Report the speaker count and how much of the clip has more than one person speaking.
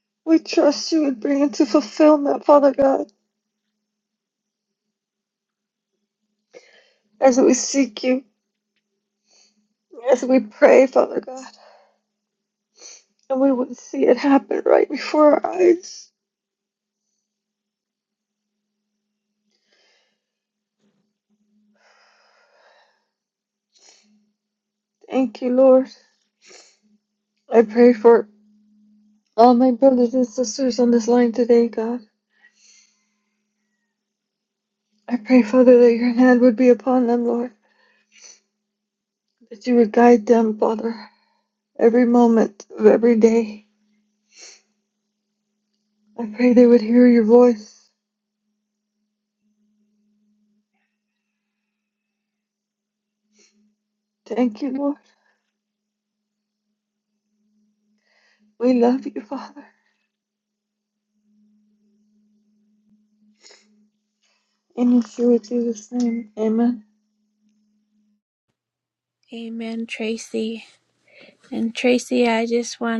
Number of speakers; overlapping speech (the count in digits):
2, no overlap